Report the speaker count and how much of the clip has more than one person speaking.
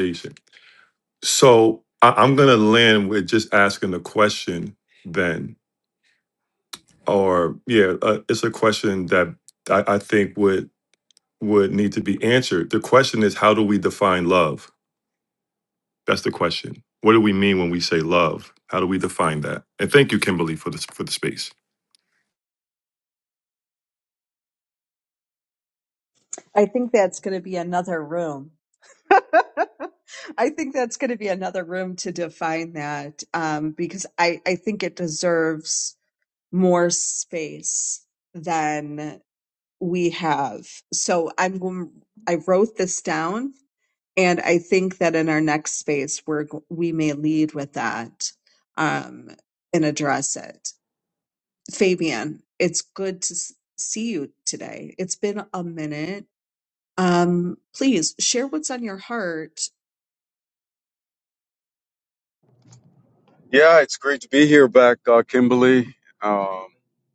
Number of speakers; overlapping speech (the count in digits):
3, no overlap